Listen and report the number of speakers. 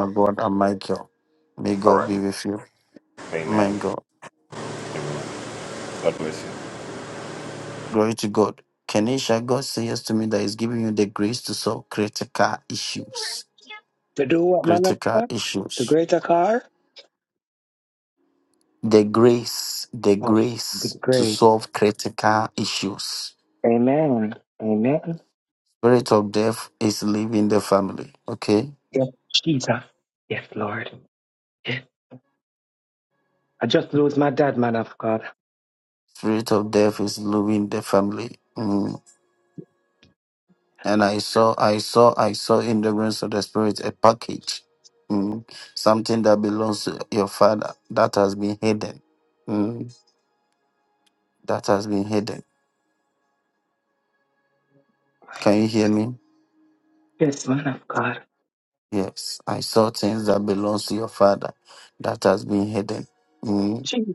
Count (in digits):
3